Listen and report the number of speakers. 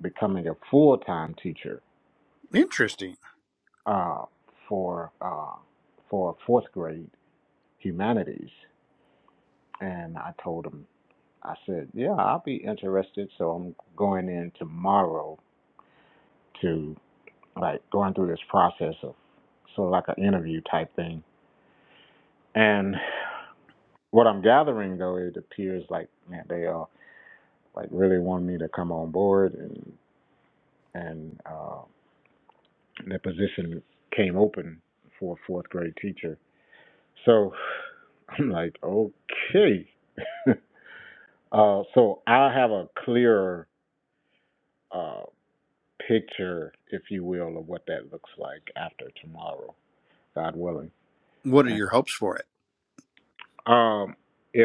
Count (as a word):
two